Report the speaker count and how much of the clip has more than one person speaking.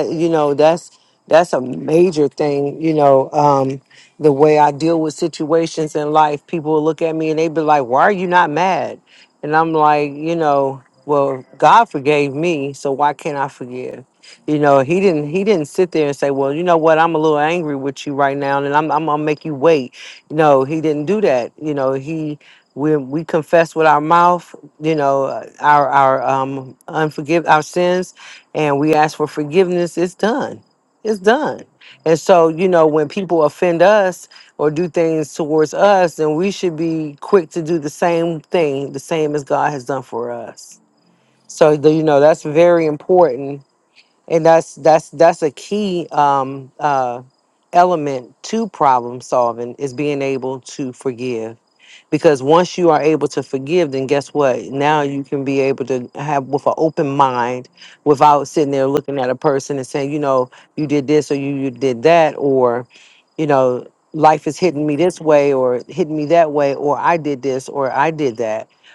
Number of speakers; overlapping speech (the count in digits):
1, no overlap